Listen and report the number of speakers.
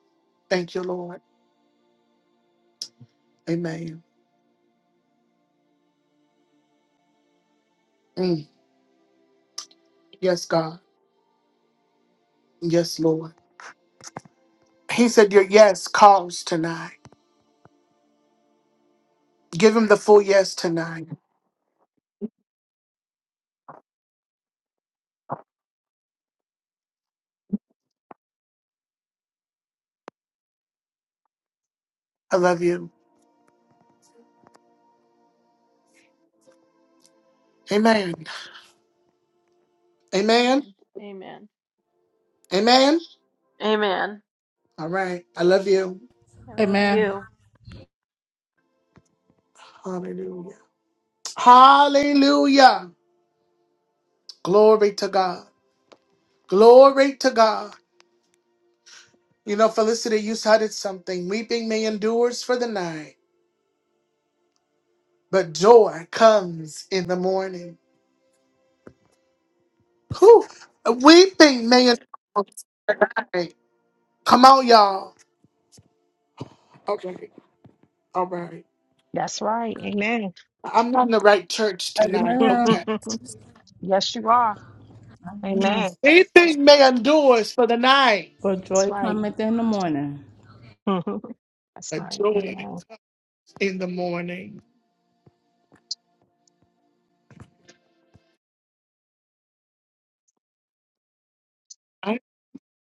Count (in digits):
4